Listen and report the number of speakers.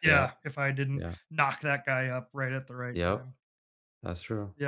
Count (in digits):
2